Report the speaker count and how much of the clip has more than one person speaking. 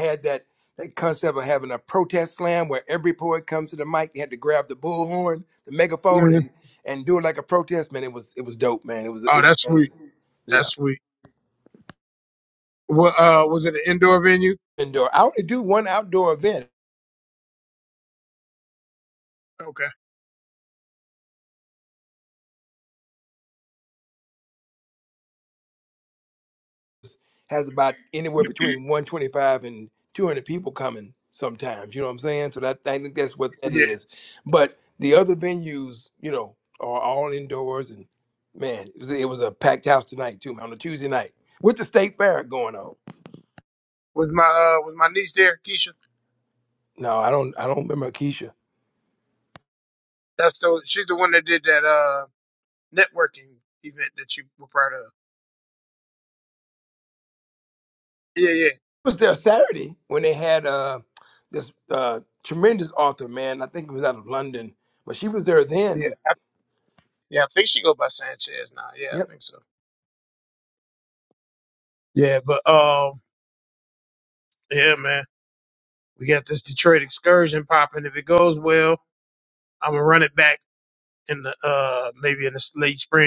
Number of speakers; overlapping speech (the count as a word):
two, about 2%